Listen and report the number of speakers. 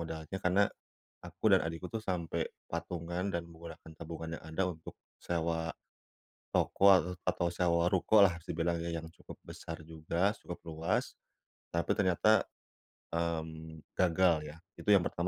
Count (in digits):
1